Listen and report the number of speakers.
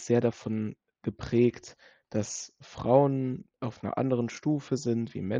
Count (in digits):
1